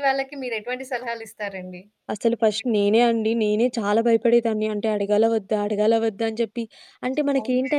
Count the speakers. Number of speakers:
2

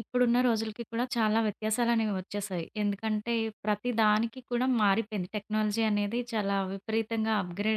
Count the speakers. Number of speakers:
1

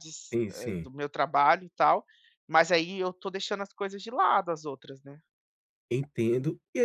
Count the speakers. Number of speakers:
2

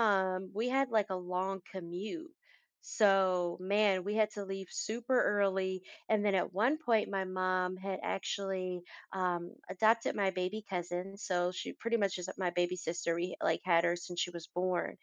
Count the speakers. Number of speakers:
1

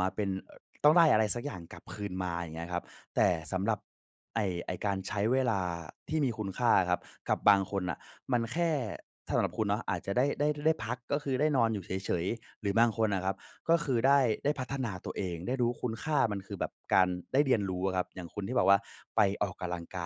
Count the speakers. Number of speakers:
1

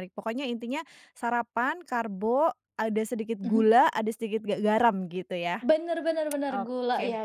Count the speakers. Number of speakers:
2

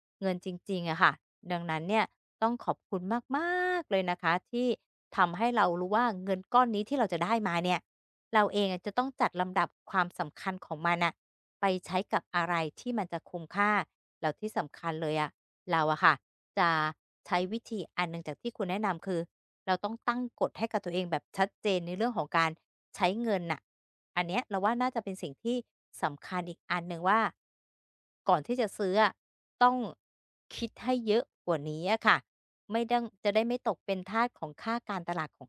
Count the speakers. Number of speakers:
1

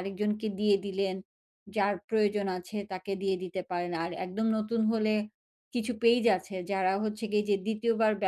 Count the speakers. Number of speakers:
1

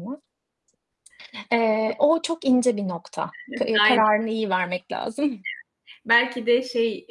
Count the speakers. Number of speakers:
2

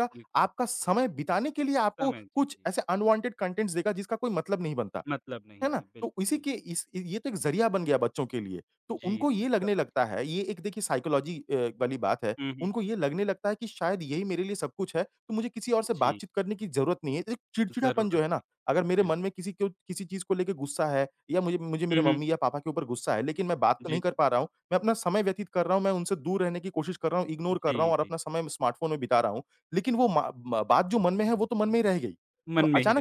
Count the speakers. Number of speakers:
2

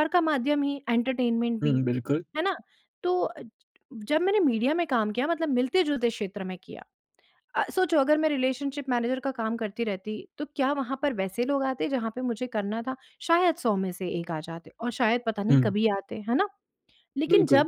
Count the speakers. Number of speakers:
2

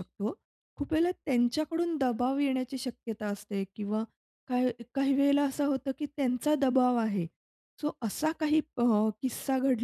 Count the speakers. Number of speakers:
1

